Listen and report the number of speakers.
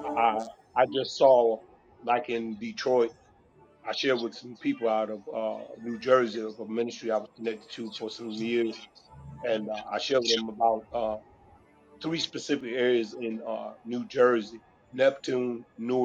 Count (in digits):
1